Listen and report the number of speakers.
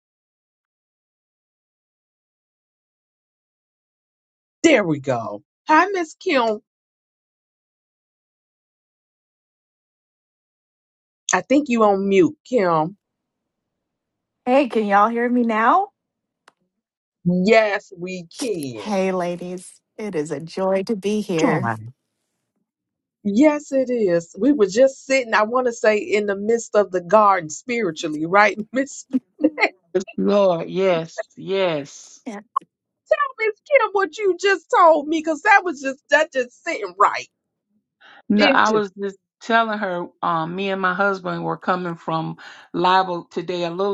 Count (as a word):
three